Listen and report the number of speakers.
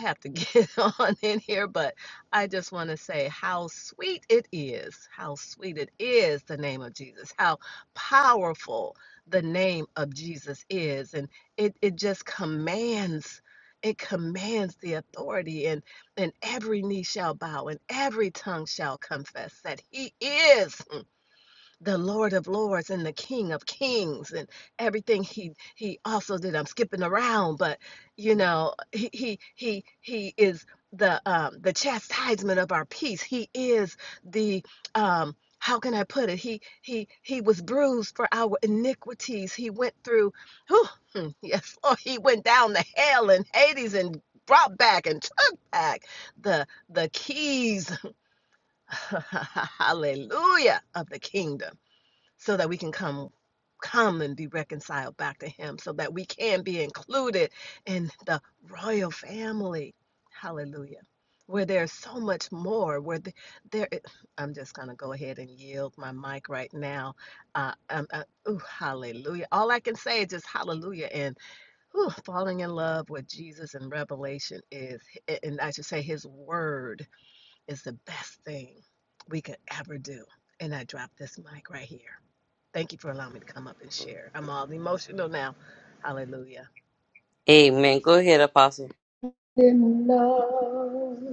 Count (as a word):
three